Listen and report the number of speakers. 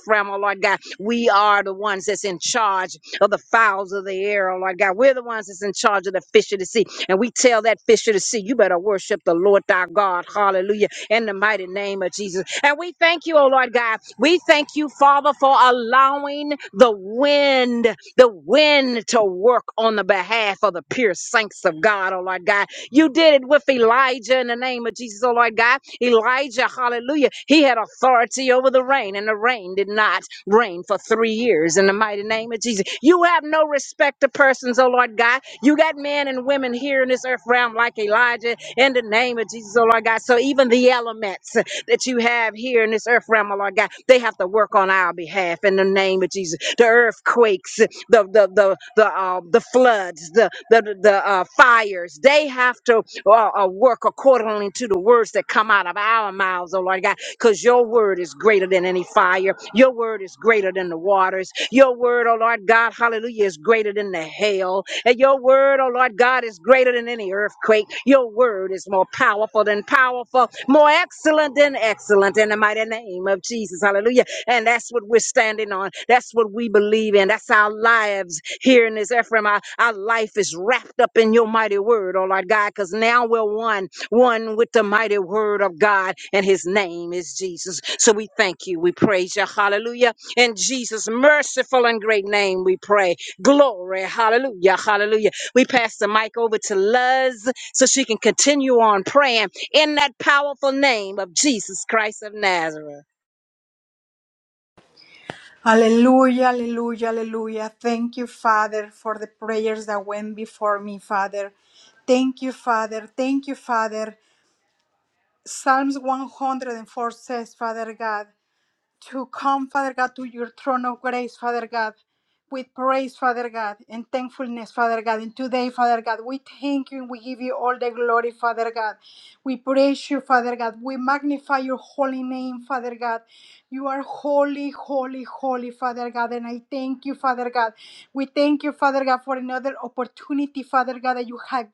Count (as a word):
two